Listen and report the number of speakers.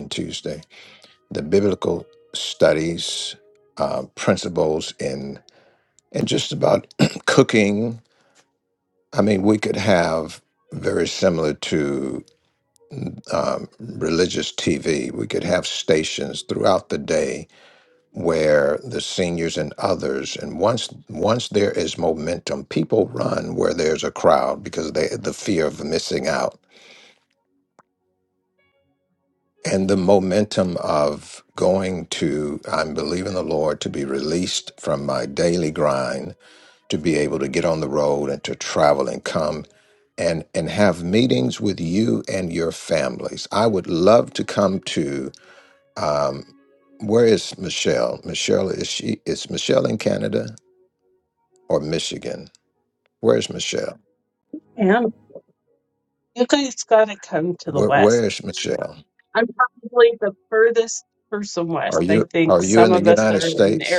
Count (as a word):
two